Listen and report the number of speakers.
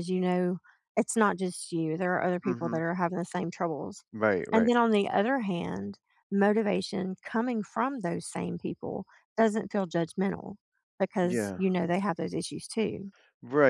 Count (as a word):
two